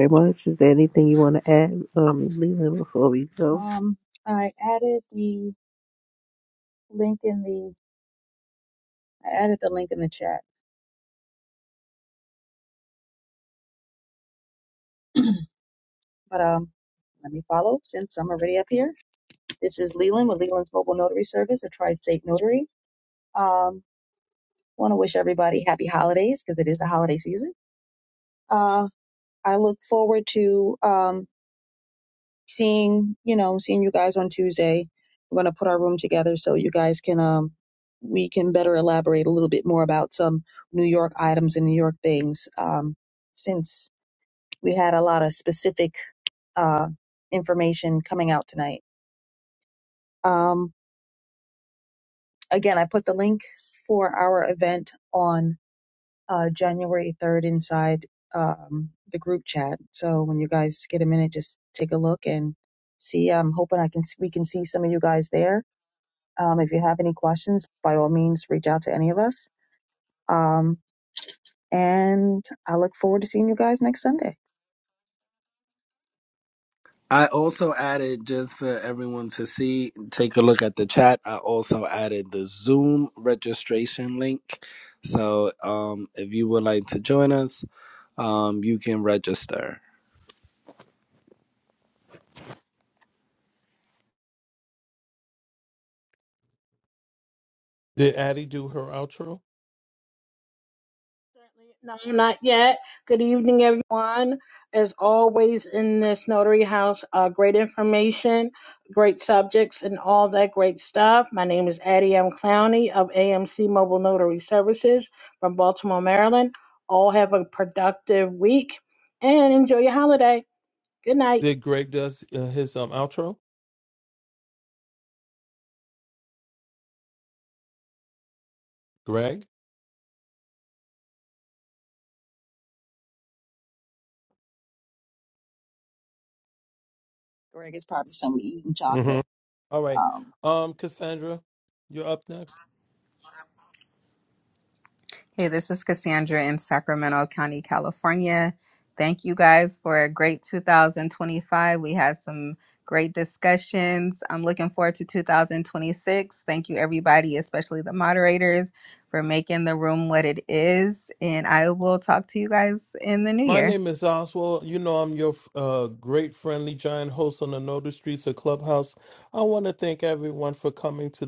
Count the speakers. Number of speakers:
6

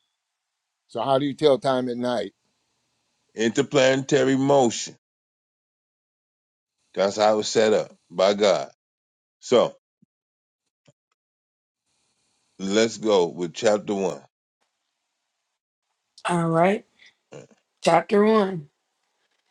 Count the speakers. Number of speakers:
3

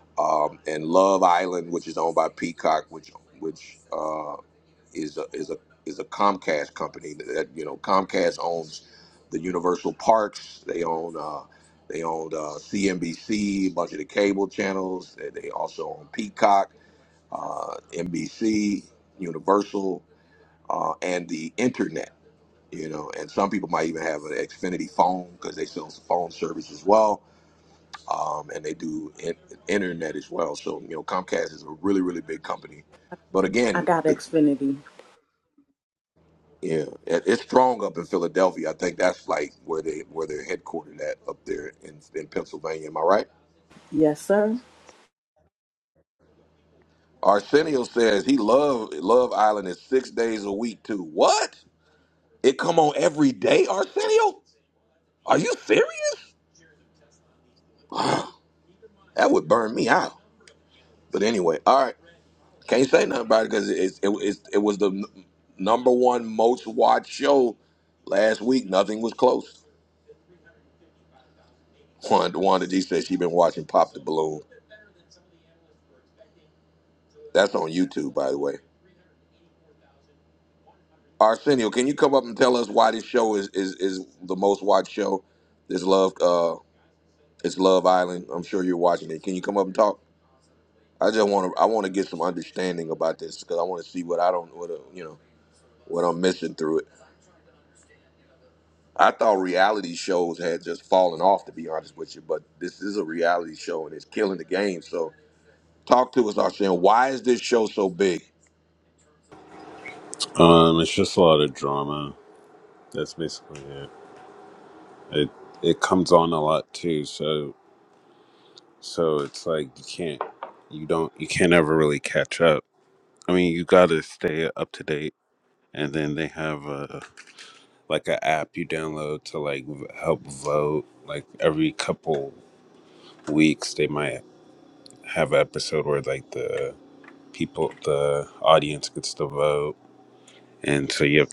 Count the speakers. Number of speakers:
3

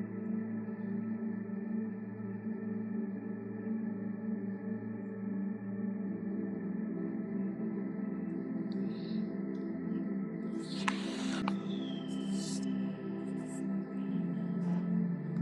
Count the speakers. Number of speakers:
0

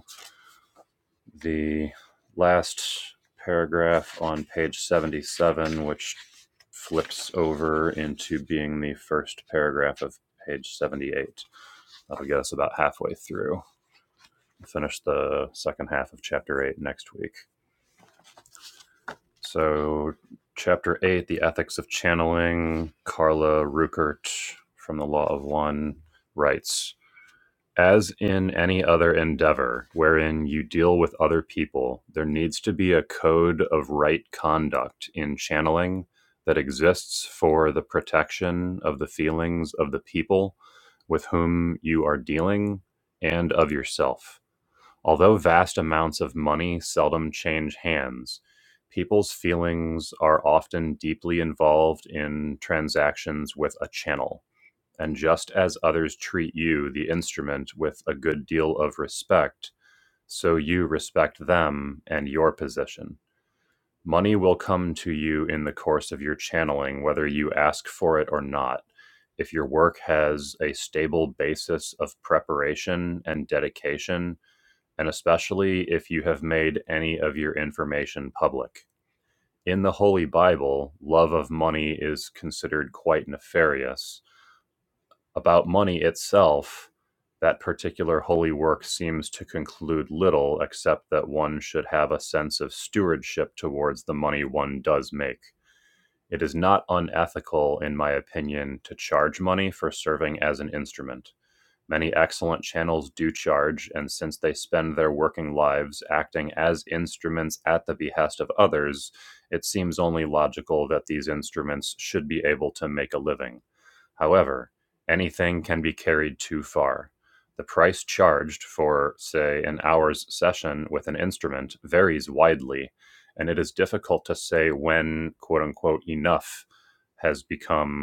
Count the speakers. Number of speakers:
1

